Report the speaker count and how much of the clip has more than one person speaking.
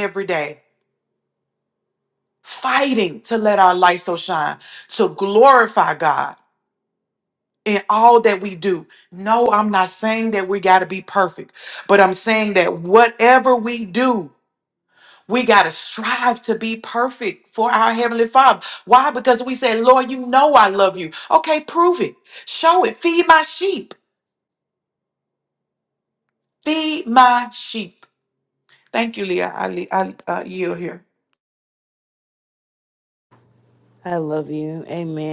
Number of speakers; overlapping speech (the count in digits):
2, no overlap